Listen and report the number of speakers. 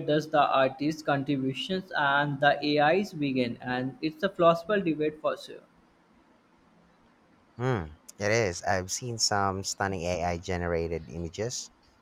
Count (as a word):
two